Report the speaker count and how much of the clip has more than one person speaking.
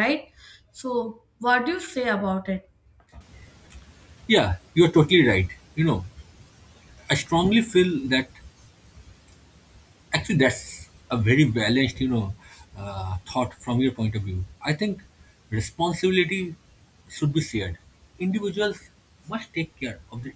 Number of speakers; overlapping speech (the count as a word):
two, no overlap